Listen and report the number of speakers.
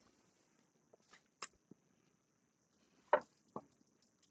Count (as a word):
zero